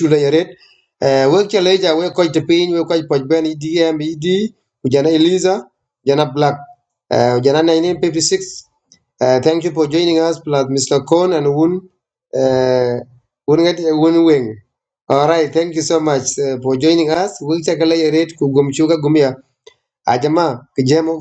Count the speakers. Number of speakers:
1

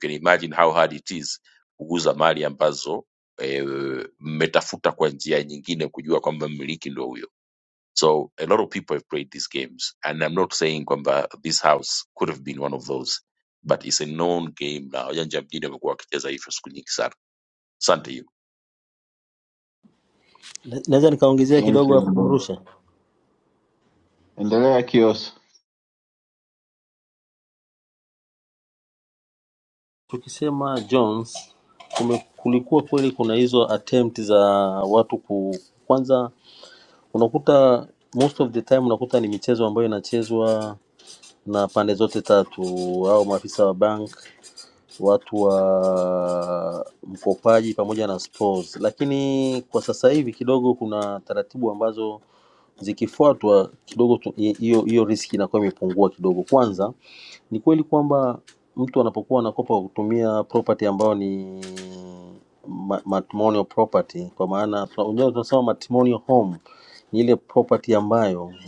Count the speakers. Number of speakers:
3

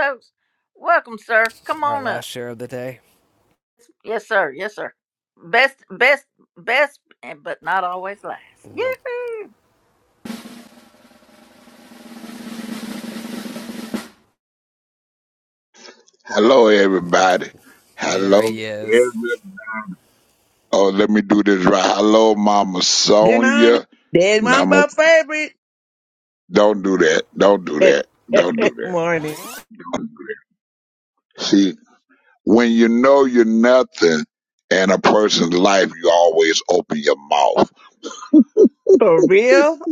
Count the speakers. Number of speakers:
4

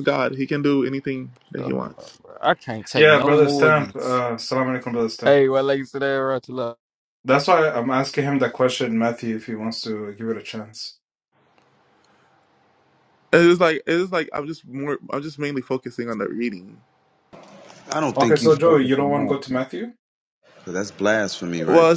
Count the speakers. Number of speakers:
4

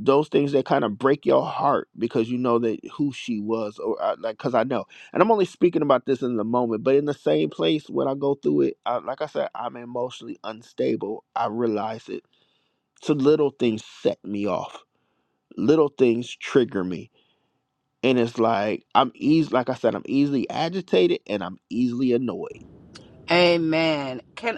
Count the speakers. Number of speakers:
2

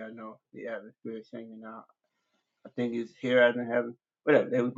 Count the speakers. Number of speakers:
1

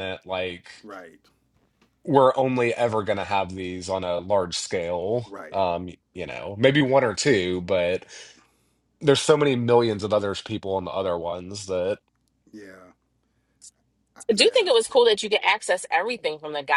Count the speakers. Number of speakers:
3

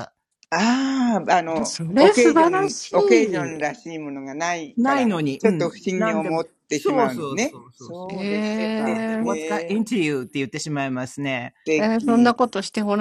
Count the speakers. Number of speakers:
3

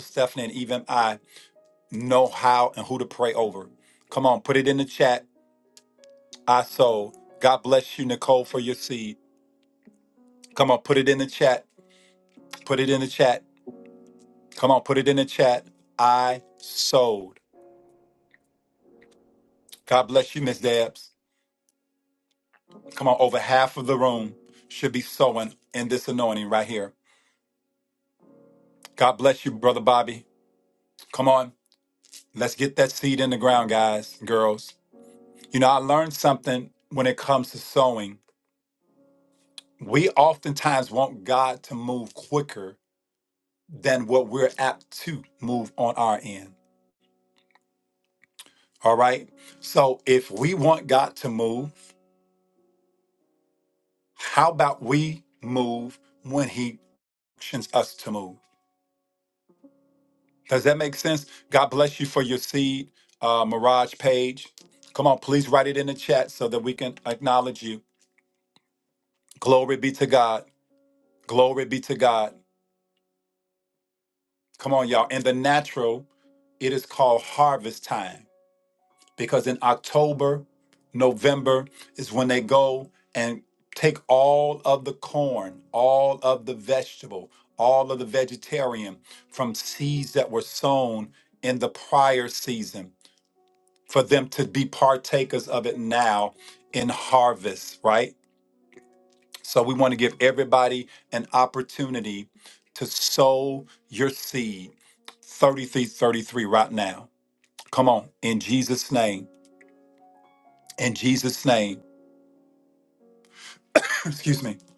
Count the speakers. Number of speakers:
1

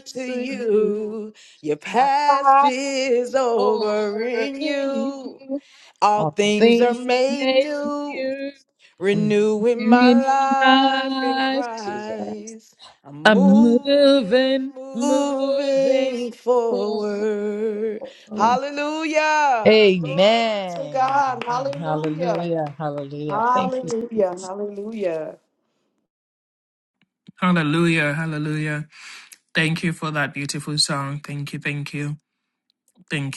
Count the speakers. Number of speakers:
3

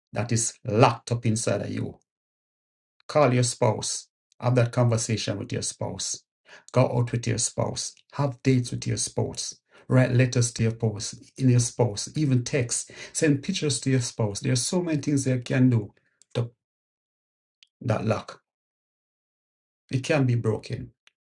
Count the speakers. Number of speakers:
1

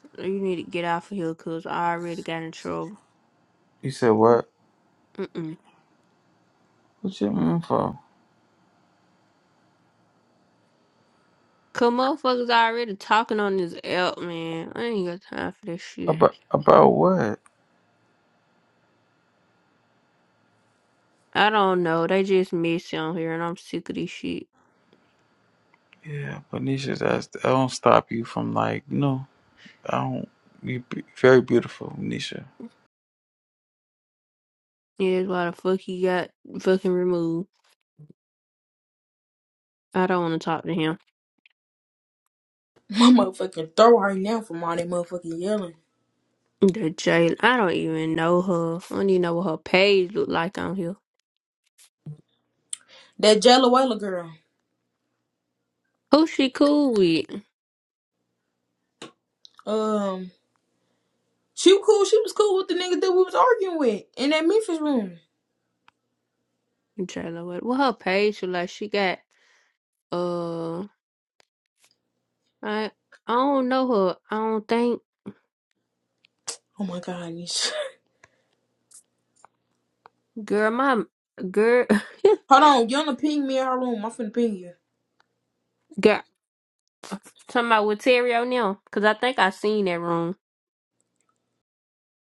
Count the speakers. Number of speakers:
3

